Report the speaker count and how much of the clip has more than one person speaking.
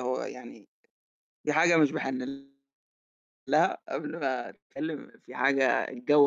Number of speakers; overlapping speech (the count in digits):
1, no overlap